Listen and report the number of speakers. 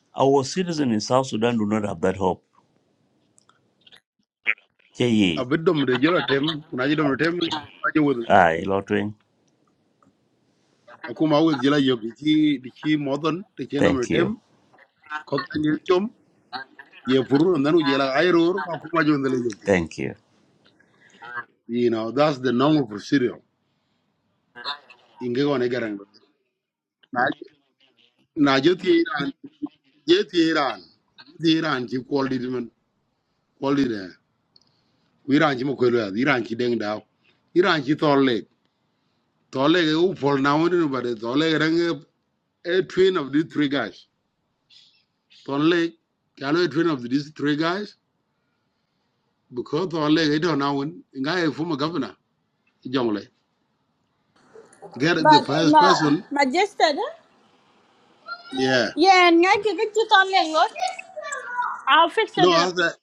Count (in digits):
3